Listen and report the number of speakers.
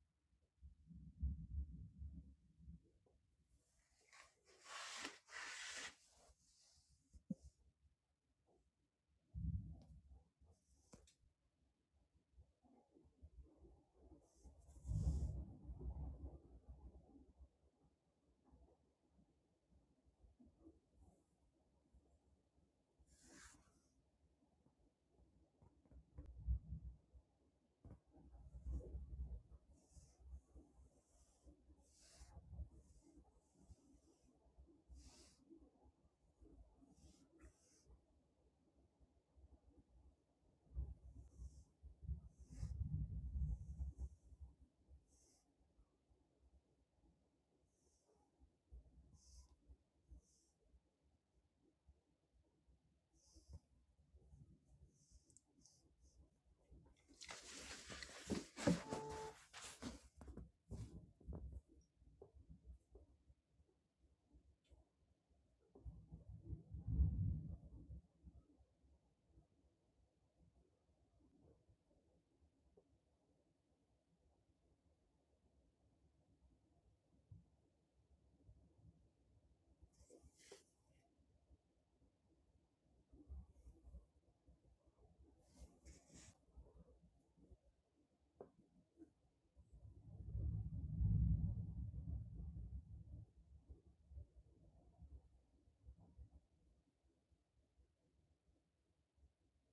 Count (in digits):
0